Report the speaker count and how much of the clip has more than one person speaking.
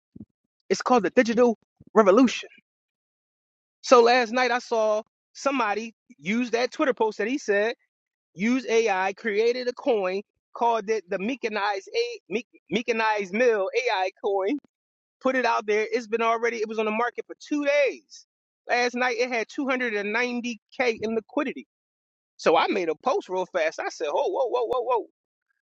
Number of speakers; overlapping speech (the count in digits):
1, no overlap